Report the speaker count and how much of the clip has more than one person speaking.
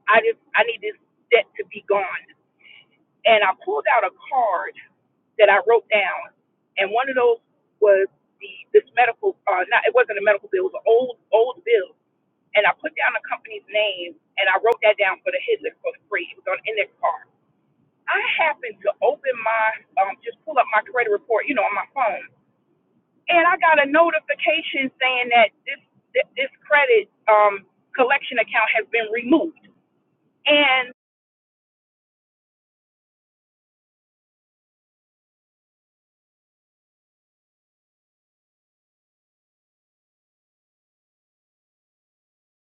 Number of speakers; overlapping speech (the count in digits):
1, no overlap